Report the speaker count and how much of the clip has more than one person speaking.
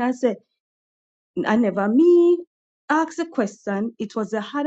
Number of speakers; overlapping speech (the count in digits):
1, no overlap